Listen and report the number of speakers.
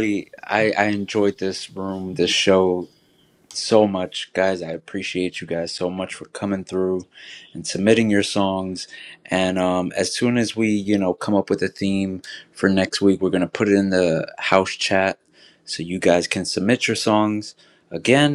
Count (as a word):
one